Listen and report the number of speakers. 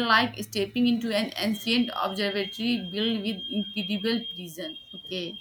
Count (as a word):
one